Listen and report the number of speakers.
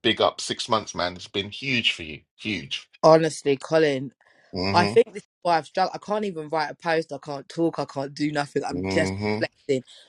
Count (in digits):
2